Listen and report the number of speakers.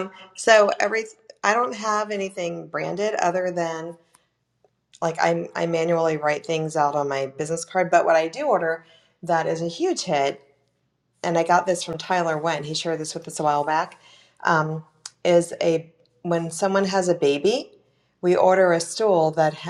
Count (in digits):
1